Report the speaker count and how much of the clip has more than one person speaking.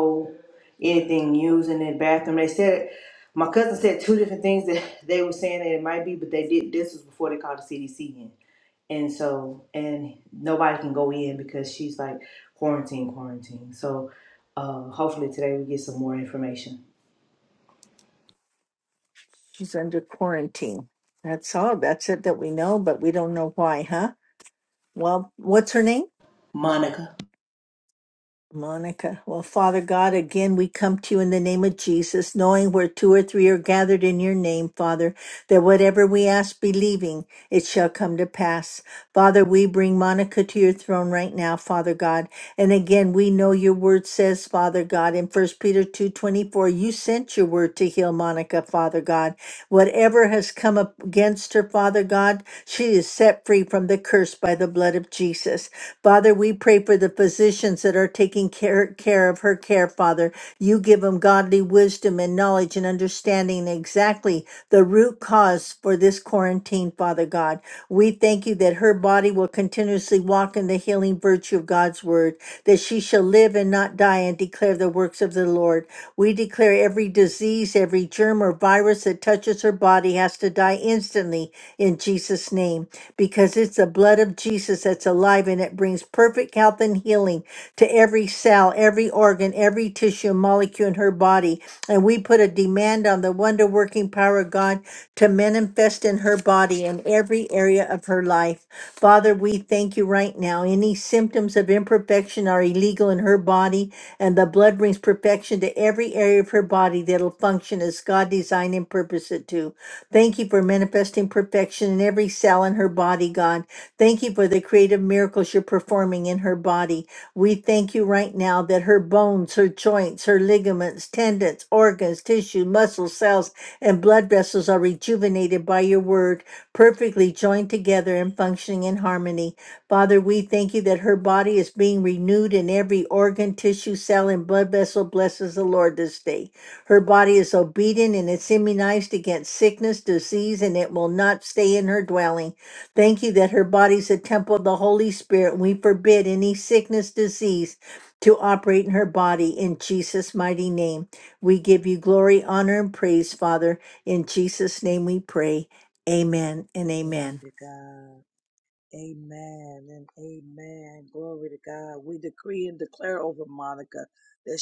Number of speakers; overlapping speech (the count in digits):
3, under 1%